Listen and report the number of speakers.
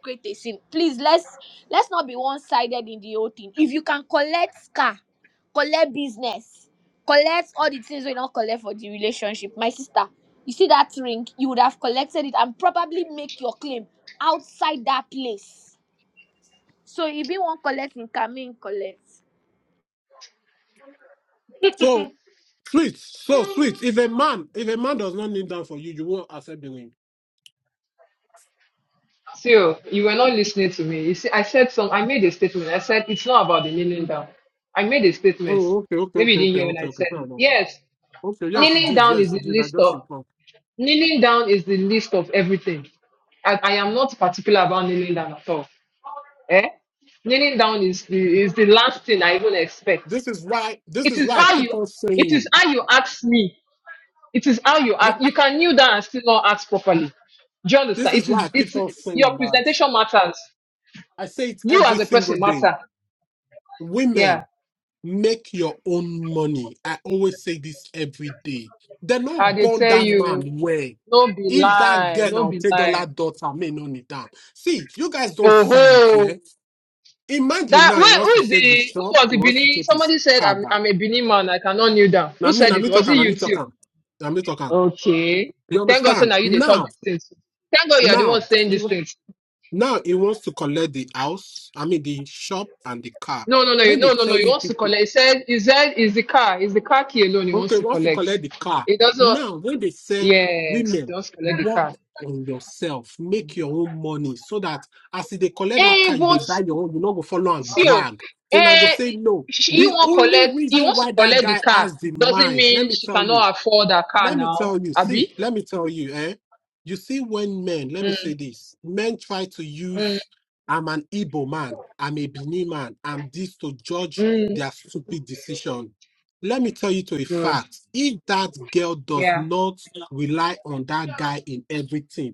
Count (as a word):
three